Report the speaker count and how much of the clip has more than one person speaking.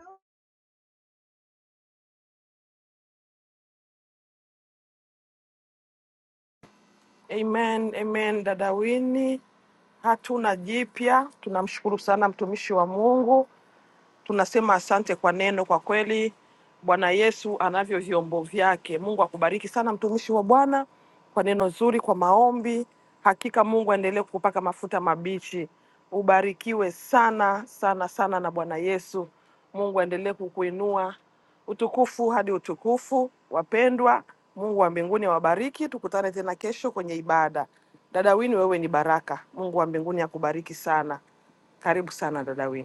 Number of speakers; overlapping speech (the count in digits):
1, no overlap